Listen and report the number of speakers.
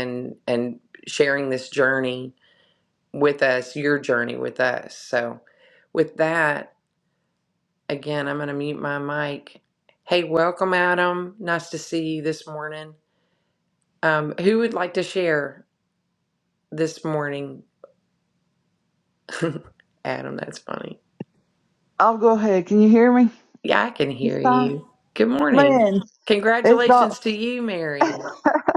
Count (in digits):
2